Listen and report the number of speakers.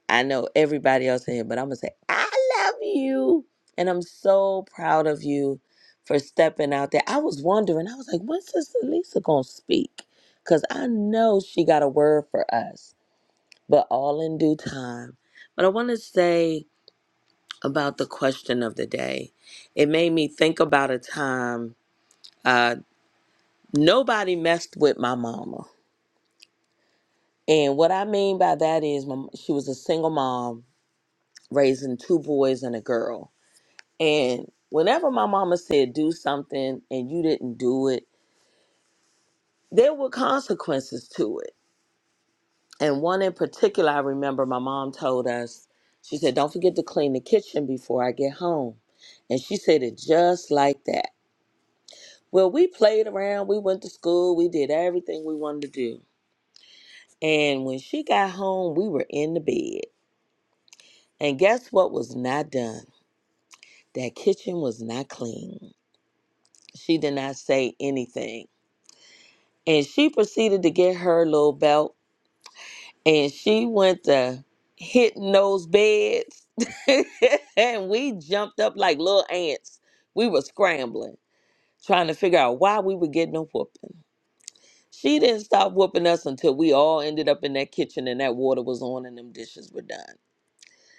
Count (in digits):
1